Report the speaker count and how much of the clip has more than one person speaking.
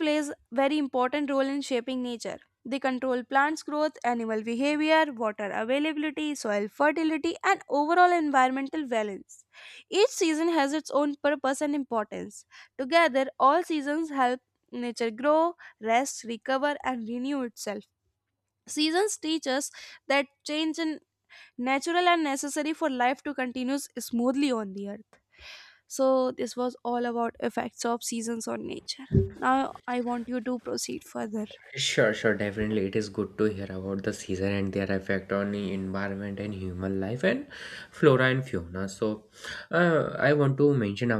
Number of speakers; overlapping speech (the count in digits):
2, no overlap